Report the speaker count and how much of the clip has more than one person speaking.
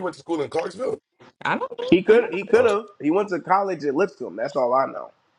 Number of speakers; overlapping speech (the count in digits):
3, about 17%